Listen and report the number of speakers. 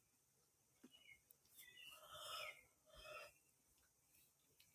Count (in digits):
0